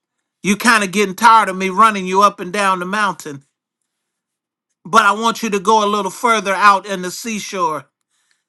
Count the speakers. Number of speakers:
1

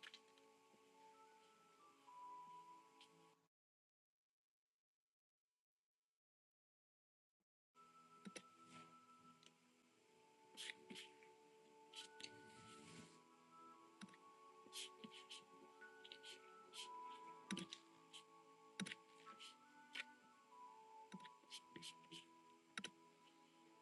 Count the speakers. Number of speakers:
0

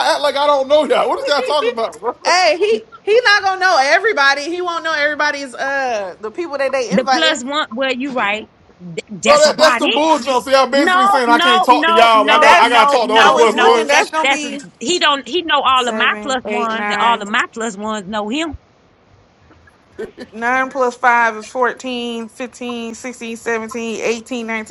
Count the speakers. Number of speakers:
3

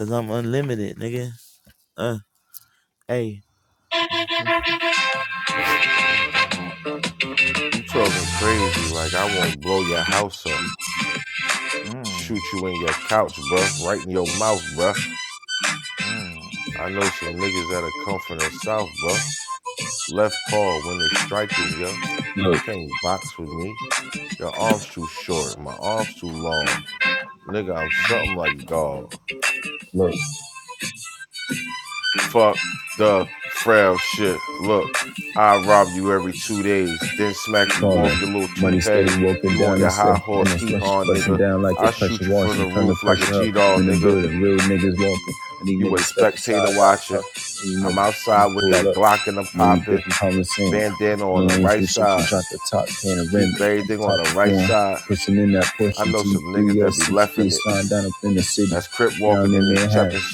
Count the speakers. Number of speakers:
3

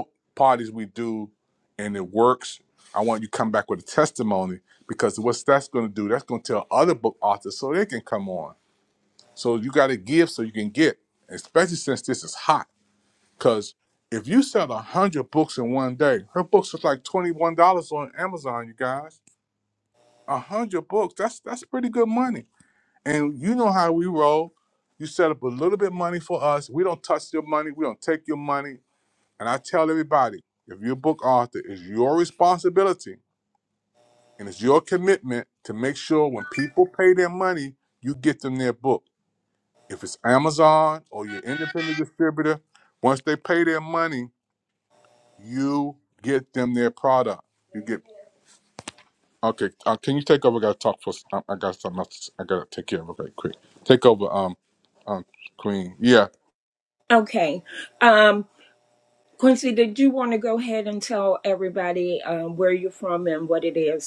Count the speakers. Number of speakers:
2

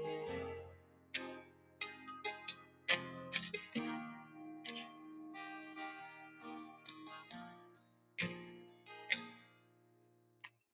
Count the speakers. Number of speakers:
0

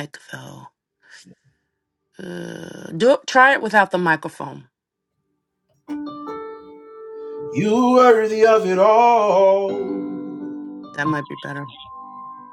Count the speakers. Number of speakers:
2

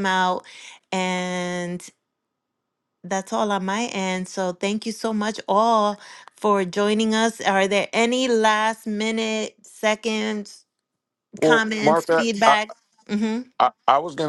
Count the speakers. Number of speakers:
2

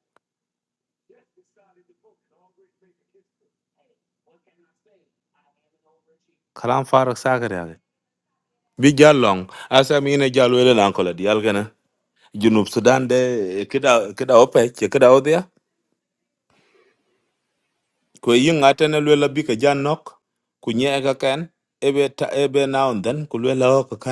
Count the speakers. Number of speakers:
1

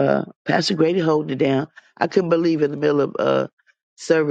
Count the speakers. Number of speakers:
1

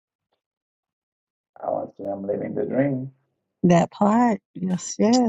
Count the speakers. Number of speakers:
2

